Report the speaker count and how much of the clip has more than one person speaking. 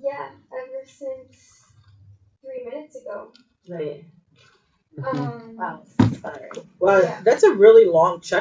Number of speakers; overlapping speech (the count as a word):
three, about 6%